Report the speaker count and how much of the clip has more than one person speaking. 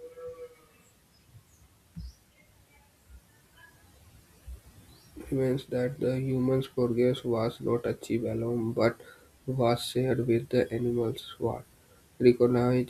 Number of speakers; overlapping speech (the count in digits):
1, no overlap